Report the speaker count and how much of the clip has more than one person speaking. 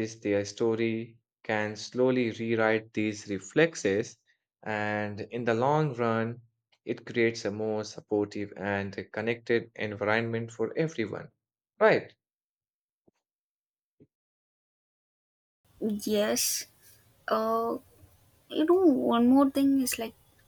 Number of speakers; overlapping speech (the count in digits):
2, no overlap